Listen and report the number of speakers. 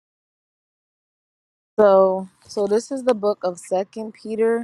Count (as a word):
one